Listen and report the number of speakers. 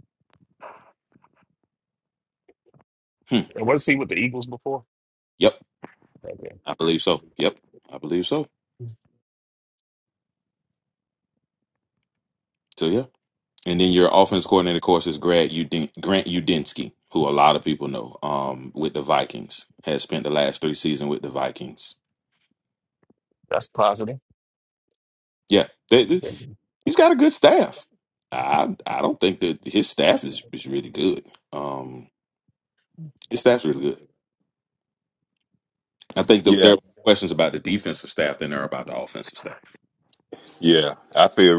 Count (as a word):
three